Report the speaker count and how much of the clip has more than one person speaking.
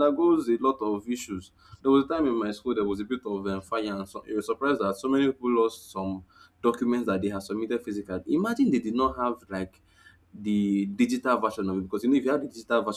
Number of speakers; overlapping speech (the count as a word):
one, no overlap